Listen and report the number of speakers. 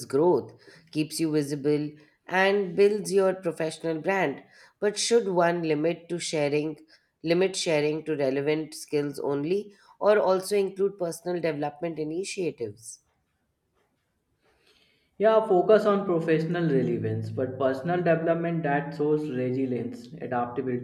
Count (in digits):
2